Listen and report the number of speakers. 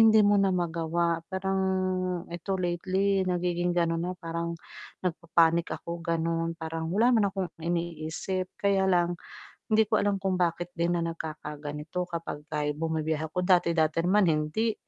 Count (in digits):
1